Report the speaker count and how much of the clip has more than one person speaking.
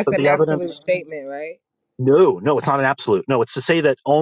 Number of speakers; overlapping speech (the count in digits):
2, about 14%